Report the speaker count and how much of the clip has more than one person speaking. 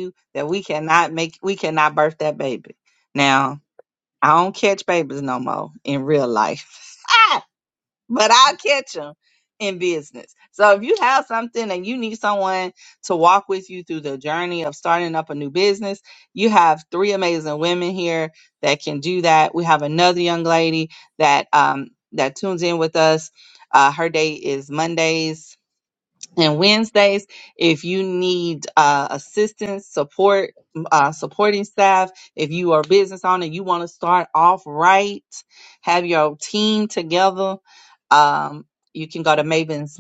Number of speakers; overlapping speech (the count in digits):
1, no overlap